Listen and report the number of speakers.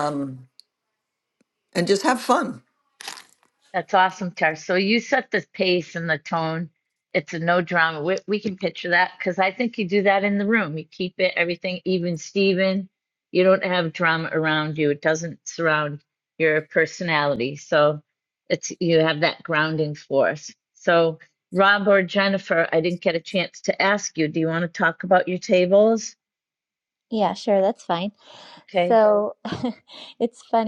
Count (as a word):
three